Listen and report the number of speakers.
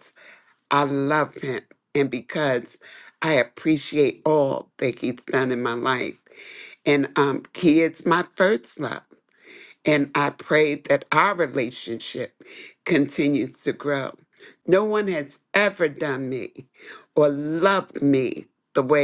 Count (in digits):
1